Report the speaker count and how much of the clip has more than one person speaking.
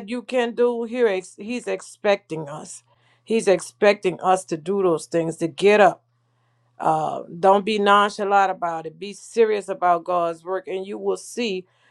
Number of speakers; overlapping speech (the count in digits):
1, no overlap